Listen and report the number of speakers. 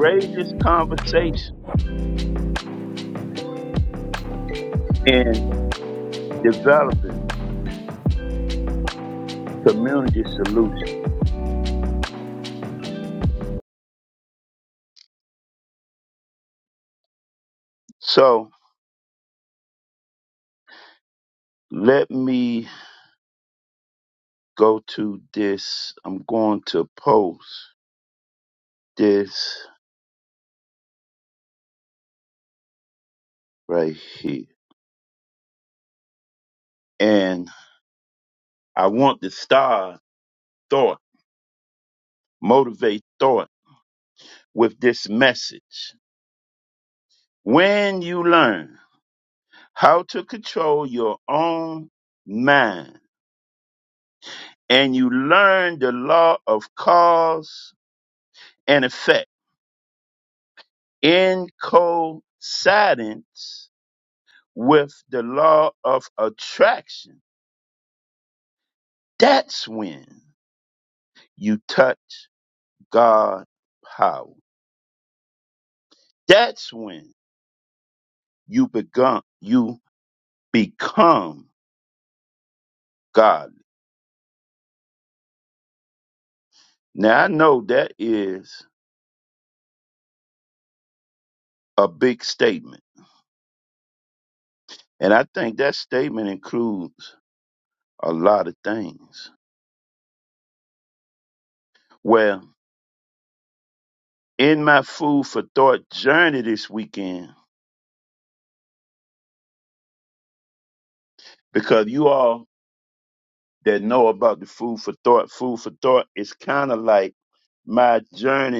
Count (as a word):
one